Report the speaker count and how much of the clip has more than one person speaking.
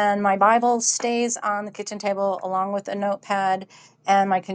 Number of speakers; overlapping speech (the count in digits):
1, no overlap